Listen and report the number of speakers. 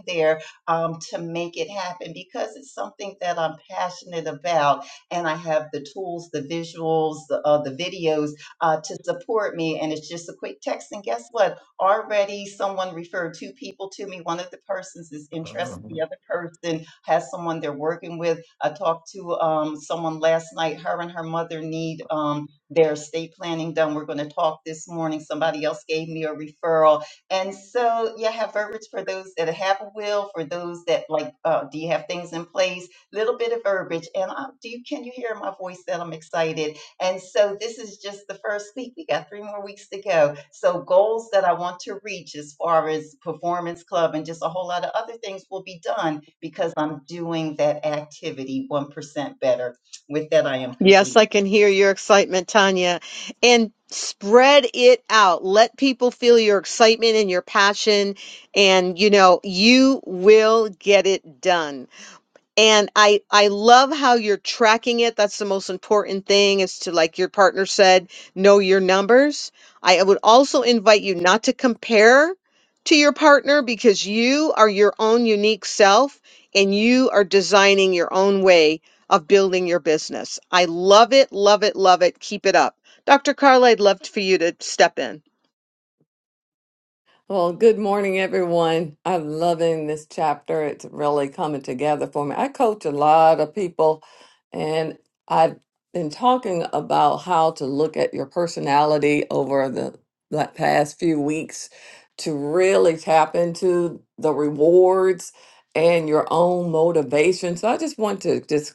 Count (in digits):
3